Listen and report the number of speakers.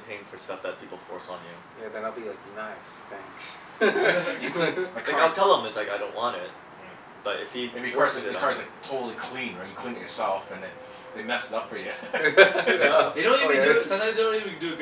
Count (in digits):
4